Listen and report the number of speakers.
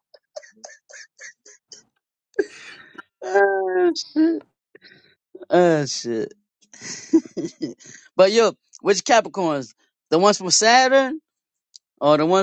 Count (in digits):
1